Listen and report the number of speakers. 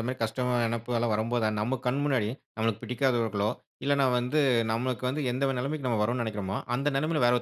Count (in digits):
1